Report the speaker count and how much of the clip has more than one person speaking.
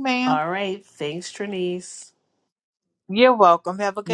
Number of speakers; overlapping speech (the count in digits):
2, about 5%